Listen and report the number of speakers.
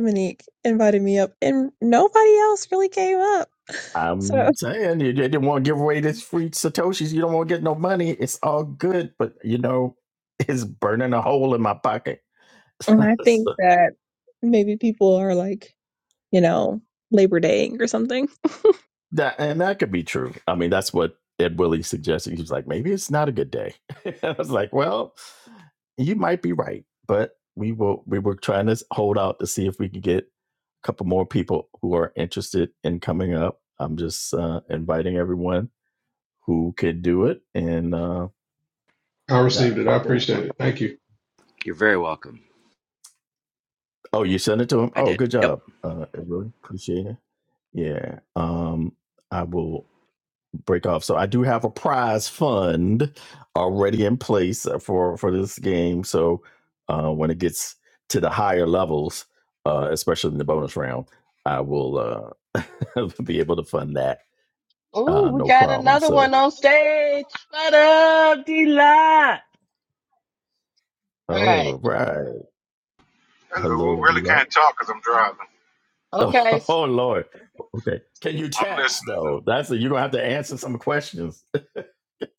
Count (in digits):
6